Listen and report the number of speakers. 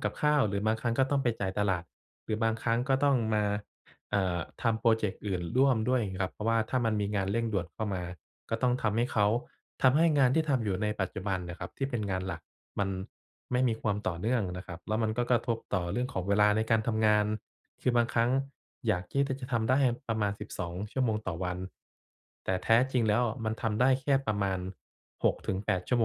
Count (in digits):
1